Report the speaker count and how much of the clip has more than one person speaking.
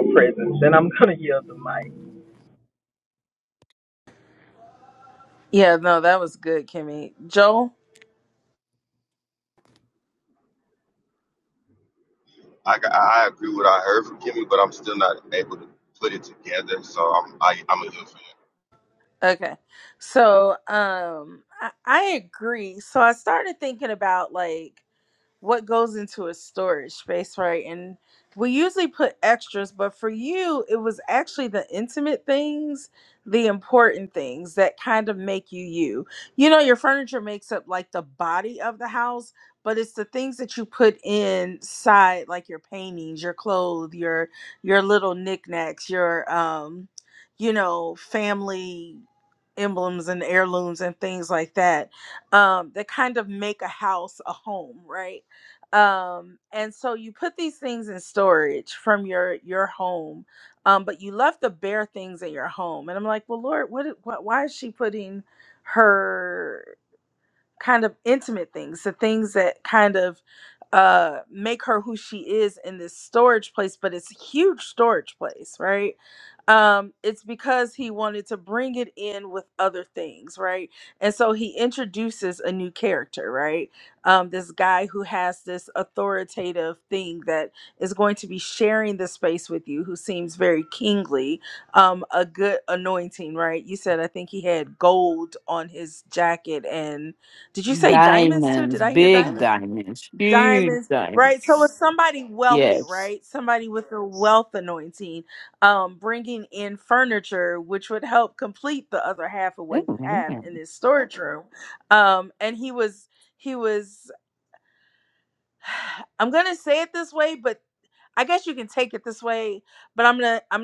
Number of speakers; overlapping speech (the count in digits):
4, about 3%